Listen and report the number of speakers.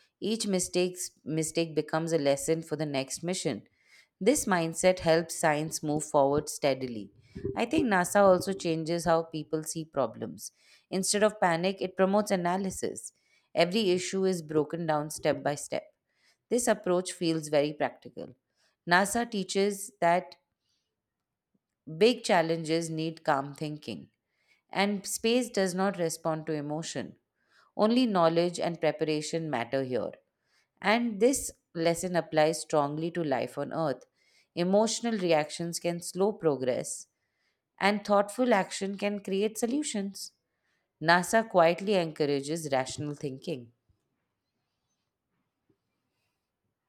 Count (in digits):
1